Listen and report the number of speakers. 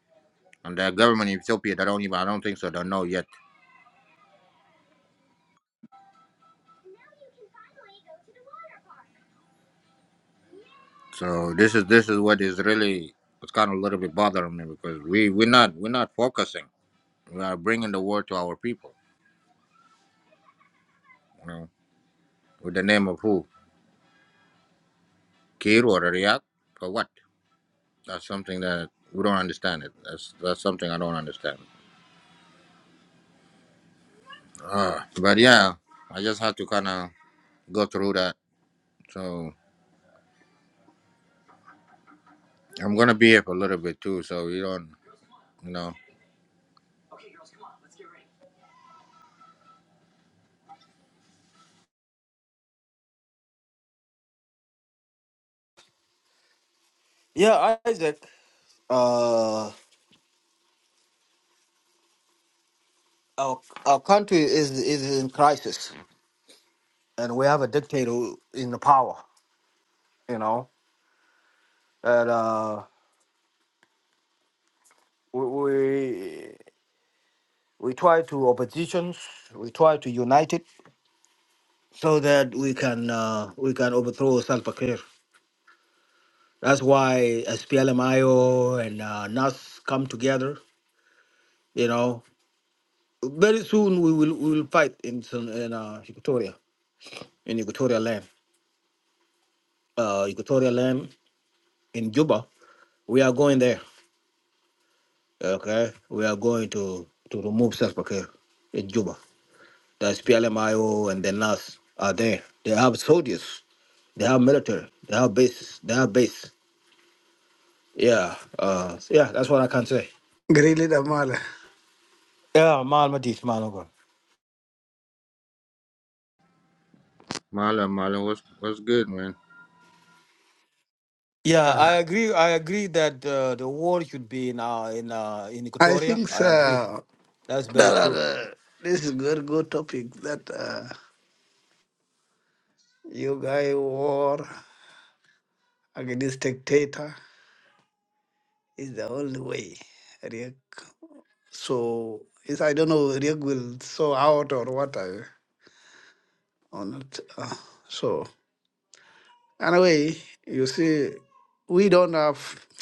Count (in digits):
3